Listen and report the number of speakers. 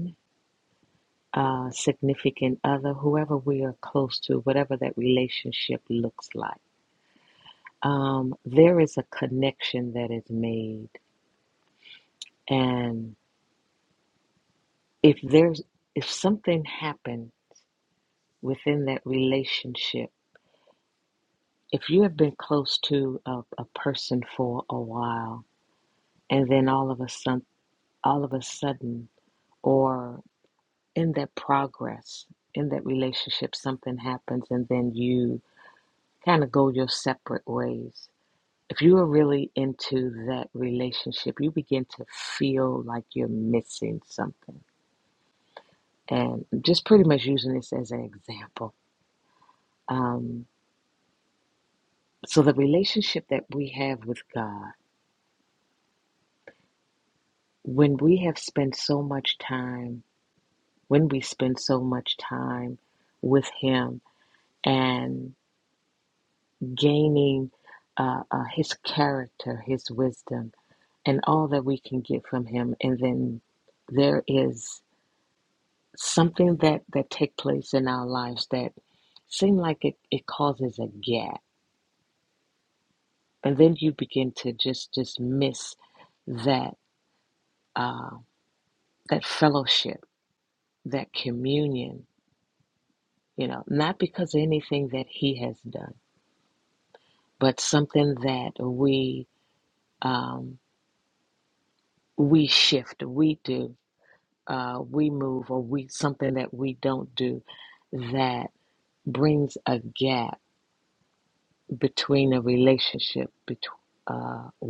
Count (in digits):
1